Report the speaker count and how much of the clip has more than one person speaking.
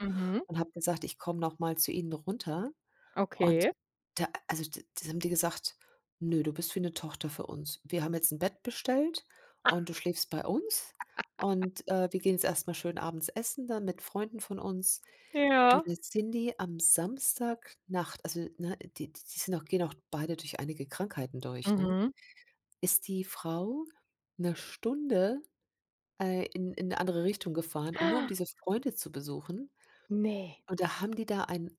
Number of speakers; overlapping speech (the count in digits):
2, about 3%